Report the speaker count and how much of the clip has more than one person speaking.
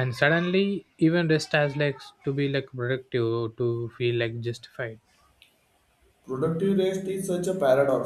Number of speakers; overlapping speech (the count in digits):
2, no overlap